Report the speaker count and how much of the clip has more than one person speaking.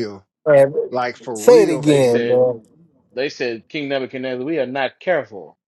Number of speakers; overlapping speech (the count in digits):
3, about 17%